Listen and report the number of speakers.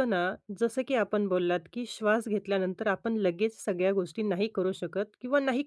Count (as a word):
one